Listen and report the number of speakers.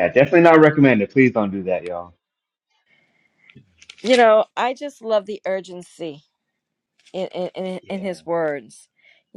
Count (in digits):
2